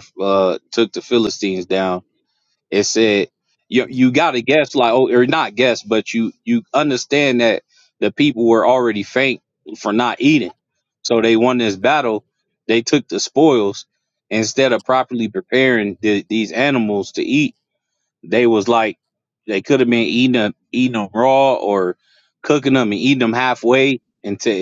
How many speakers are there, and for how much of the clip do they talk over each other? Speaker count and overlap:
1, no overlap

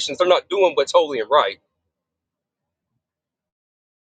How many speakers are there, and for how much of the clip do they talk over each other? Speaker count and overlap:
1, no overlap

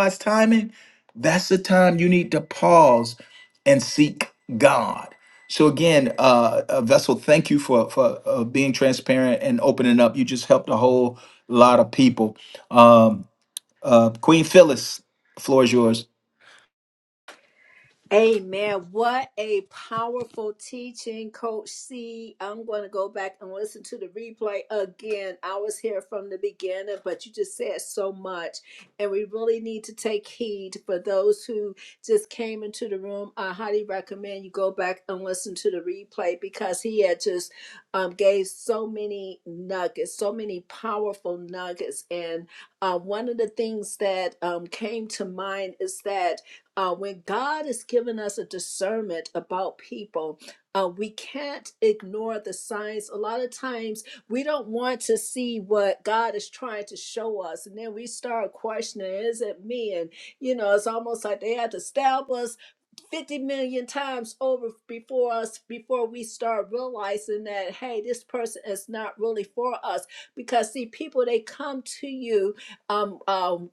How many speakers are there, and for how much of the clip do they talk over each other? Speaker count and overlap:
2, no overlap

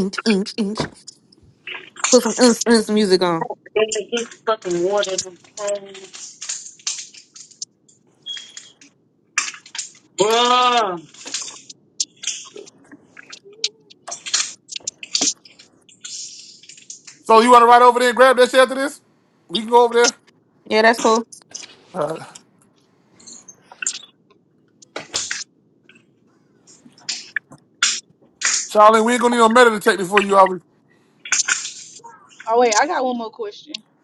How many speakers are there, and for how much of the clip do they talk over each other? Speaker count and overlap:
4, no overlap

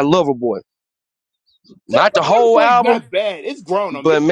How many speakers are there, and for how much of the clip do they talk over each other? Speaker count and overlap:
2, about 32%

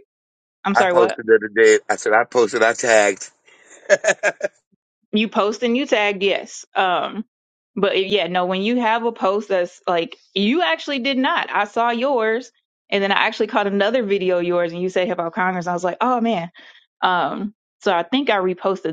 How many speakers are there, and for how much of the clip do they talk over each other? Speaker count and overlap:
2, about 2%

